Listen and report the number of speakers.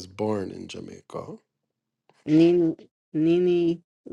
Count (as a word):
two